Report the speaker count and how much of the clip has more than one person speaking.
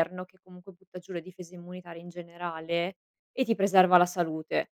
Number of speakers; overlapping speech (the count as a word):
one, no overlap